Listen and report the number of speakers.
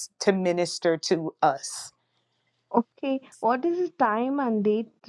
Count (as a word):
two